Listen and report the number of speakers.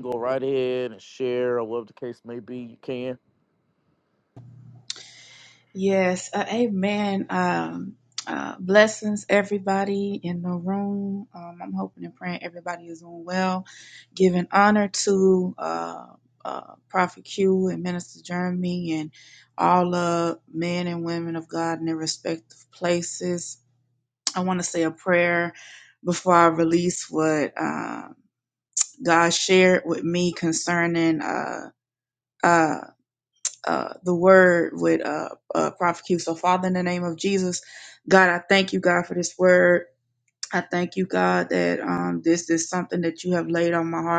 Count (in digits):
2